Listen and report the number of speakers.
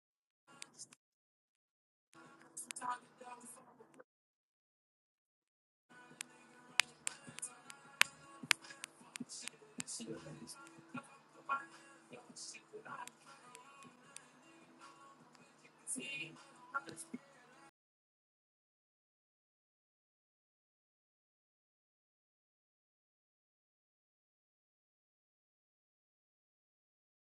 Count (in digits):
0